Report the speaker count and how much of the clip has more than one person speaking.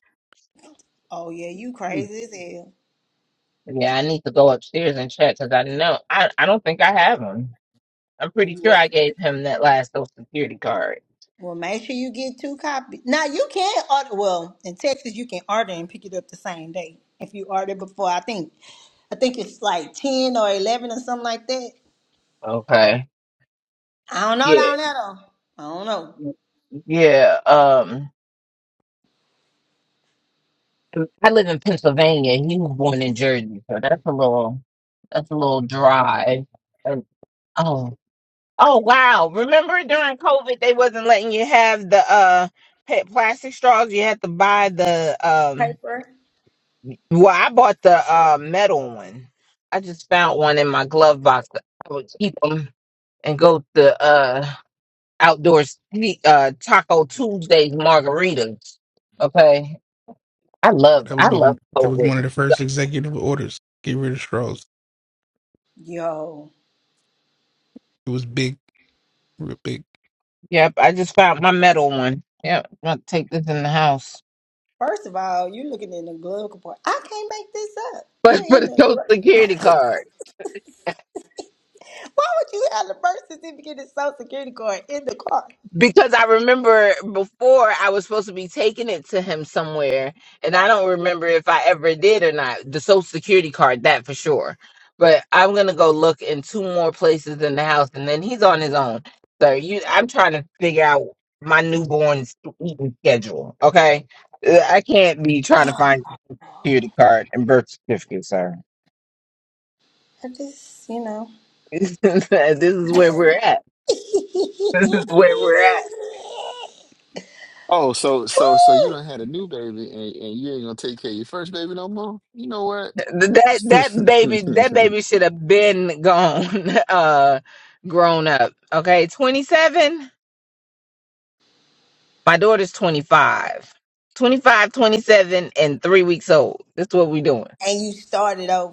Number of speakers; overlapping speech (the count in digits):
4, about 2%